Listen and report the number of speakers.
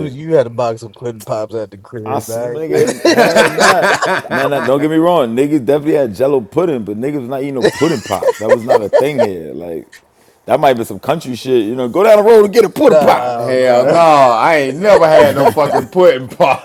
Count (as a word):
three